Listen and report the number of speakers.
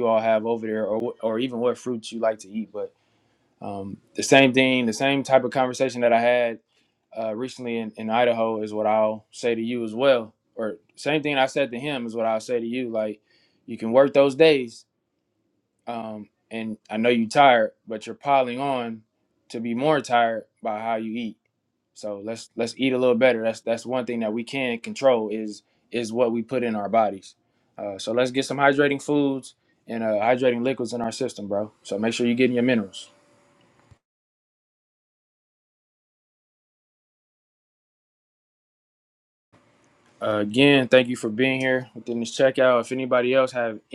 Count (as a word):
one